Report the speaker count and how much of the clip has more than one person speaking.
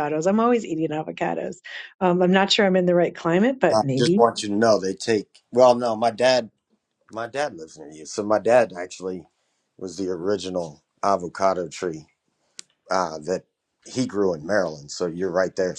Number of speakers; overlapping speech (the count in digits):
2, about 3%